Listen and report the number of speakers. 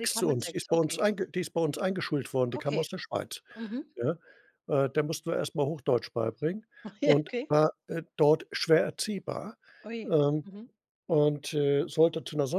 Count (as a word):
two